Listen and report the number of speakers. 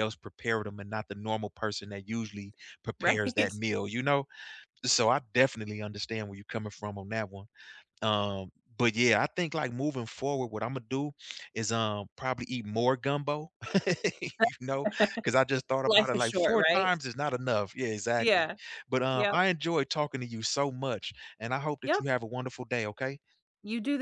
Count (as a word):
two